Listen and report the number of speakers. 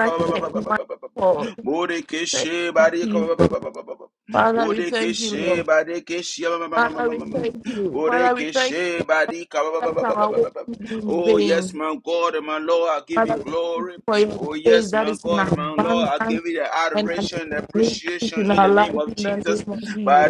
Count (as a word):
two